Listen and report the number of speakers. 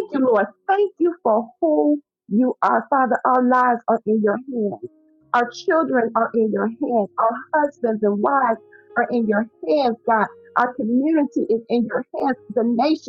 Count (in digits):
1